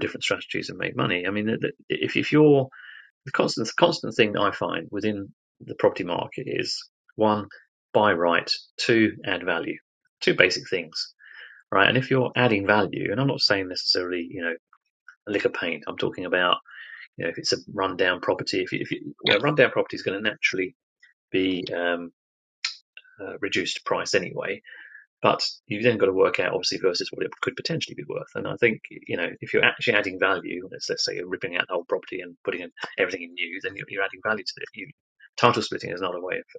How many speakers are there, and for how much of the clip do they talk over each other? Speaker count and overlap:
1, no overlap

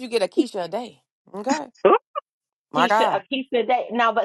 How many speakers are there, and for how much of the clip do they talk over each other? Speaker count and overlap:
2, about 10%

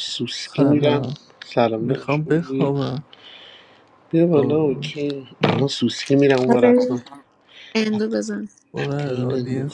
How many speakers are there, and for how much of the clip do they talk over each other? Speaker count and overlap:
3, about 32%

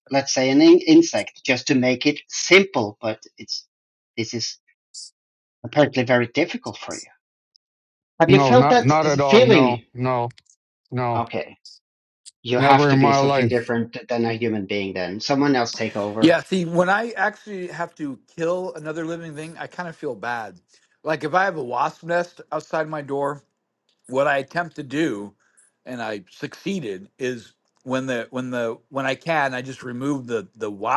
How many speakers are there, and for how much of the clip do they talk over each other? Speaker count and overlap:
3, about 7%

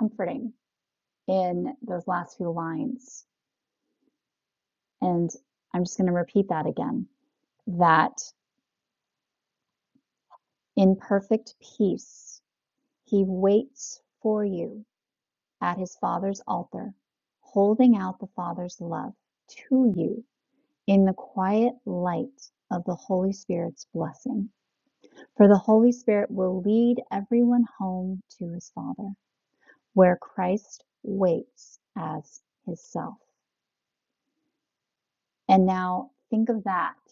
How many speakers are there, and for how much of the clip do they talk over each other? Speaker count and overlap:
1, no overlap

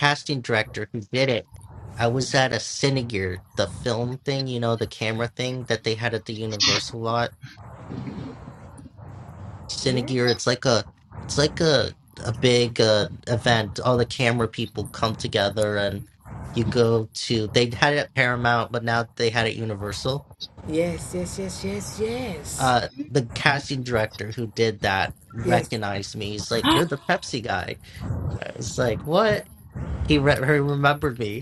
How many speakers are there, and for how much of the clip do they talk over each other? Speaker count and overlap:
2, about 1%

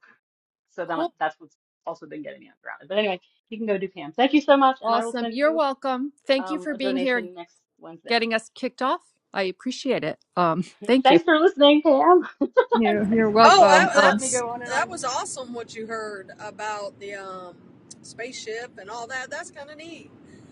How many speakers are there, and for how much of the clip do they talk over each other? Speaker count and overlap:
3, about 19%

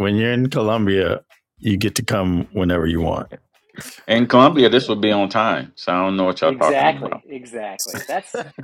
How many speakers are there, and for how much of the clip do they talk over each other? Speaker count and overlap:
3, about 9%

